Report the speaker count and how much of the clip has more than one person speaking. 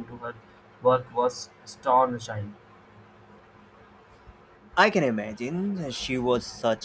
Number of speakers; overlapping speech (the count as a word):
two, no overlap